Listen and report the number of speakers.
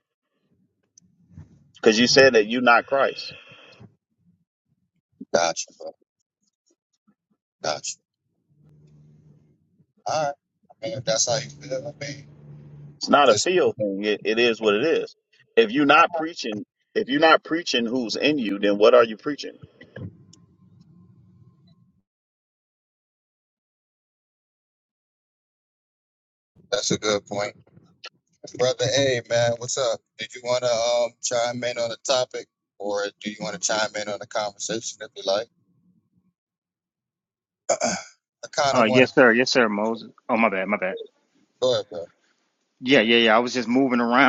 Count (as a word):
three